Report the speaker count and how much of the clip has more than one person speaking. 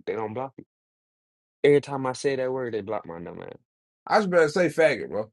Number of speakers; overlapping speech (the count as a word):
two, no overlap